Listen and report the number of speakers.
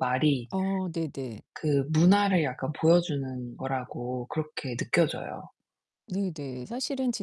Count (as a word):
two